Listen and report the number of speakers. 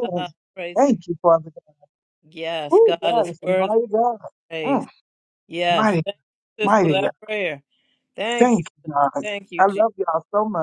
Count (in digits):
2